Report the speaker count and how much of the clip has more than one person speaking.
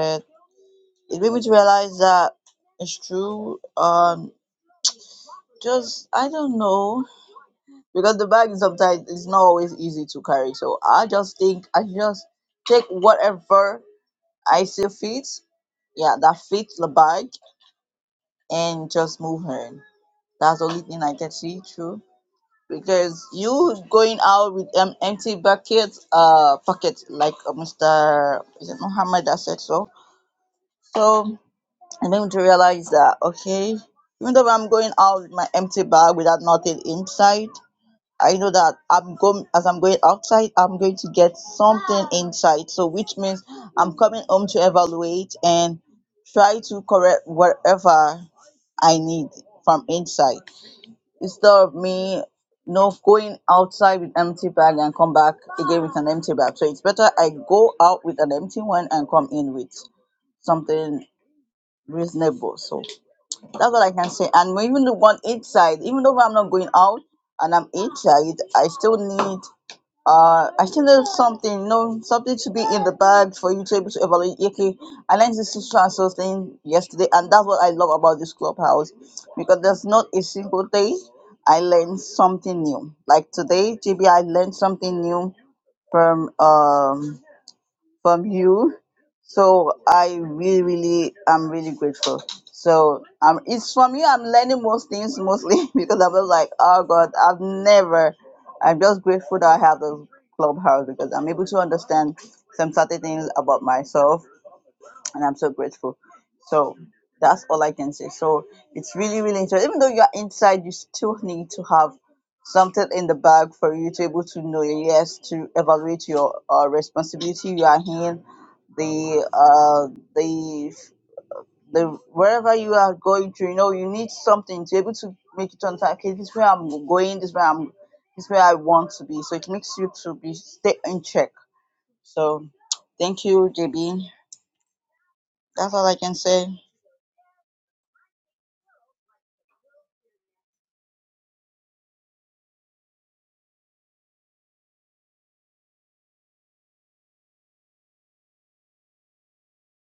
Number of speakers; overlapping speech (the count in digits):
1, no overlap